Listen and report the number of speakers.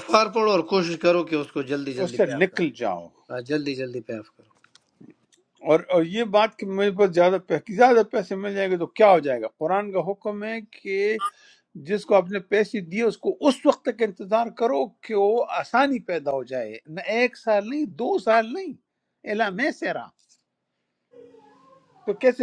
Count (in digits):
2